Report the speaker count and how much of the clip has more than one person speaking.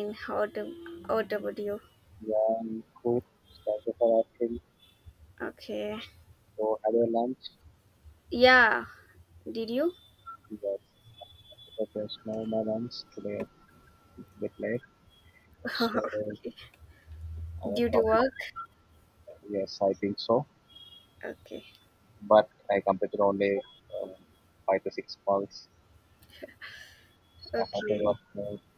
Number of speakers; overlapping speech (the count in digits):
2, about 4%